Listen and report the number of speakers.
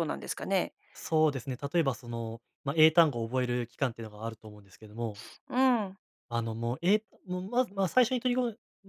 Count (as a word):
two